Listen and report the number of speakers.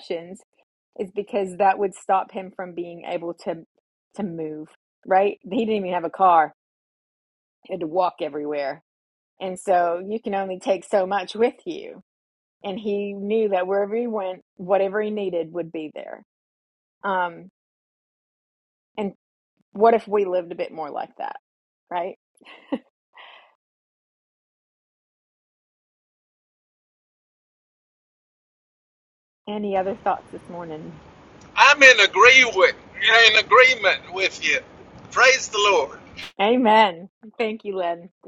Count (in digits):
2